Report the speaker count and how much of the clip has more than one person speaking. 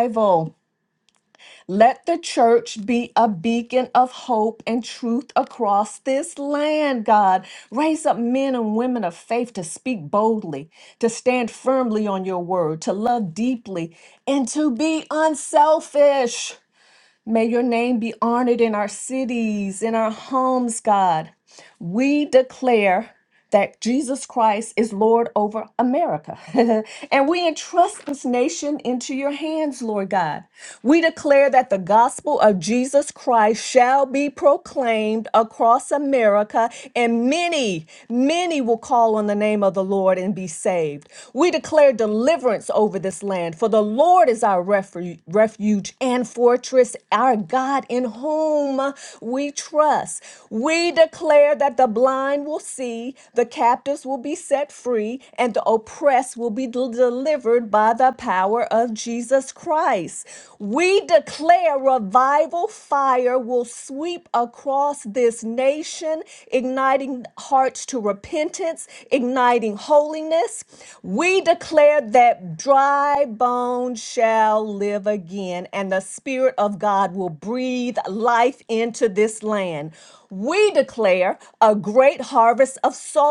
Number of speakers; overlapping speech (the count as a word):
one, no overlap